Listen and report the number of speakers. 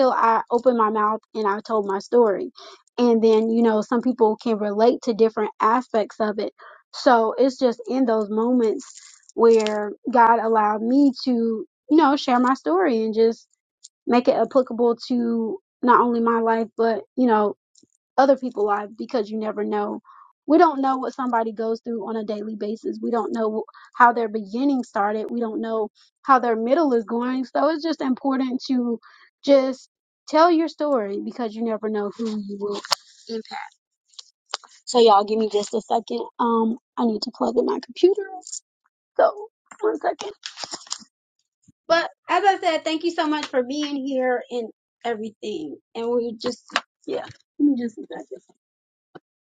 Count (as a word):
one